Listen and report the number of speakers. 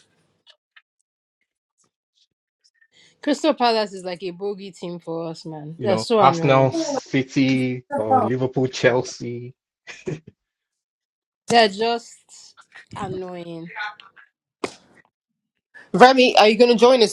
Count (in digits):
3